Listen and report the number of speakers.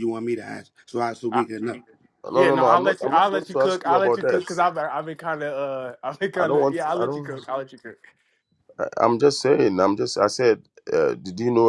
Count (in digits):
3